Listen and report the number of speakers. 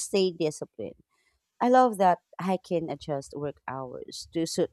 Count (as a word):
one